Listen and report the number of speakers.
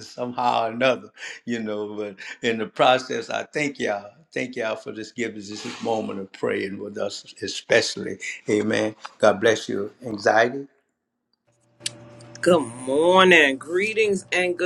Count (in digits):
2